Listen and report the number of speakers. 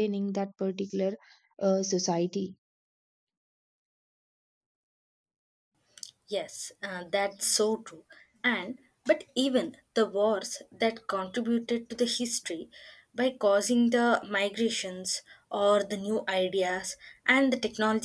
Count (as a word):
two